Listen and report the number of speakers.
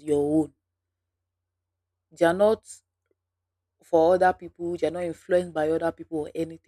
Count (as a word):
one